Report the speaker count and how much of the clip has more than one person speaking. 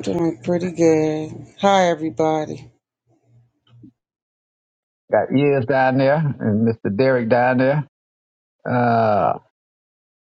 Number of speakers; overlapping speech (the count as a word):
two, no overlap